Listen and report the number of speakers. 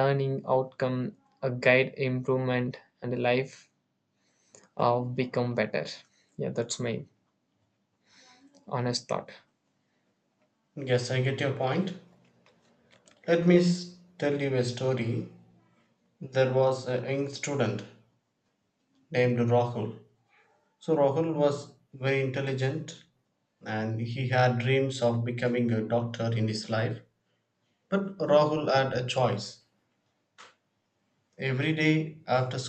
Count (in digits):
2